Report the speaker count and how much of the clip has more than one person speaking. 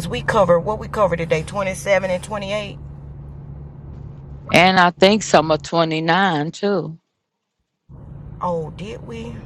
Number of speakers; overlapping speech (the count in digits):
2, no overlap